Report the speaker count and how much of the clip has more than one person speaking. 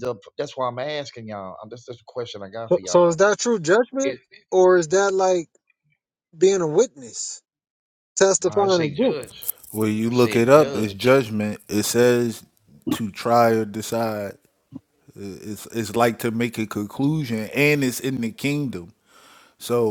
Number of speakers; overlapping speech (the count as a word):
three, about 12%